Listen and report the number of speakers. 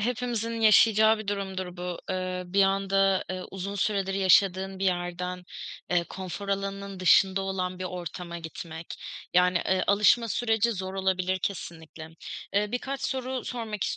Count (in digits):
1